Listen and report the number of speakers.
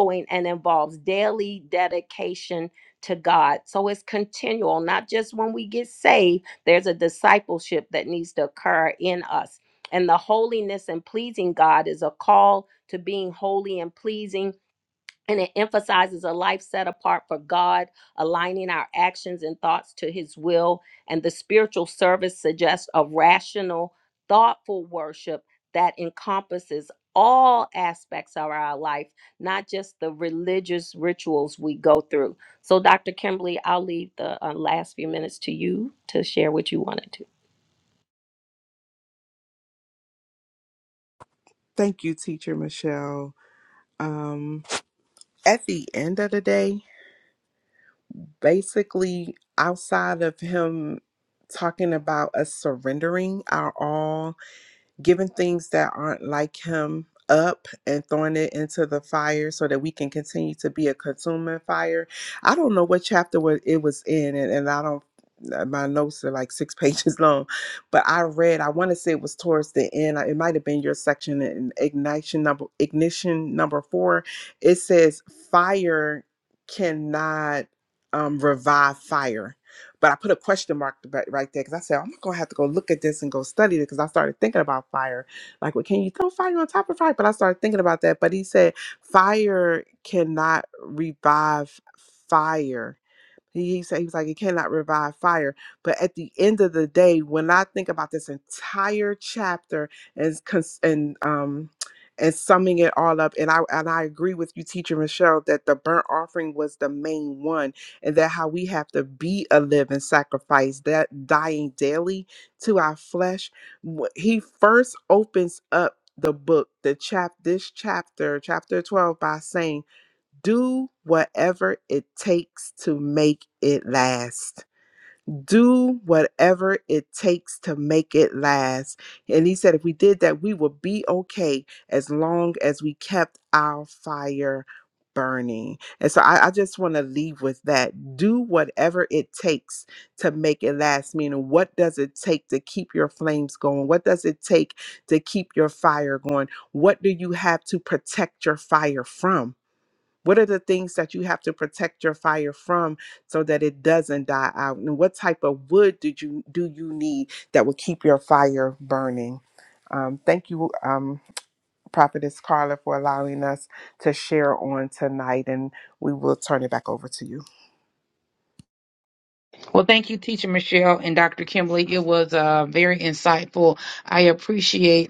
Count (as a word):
three